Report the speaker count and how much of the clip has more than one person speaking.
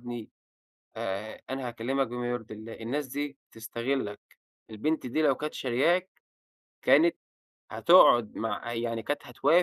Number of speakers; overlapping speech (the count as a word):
one, no overlap